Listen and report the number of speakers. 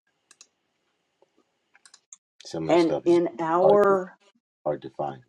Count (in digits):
2